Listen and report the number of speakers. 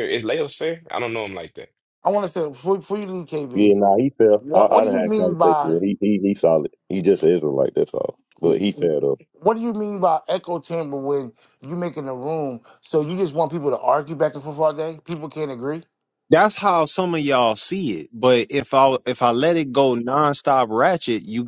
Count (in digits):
4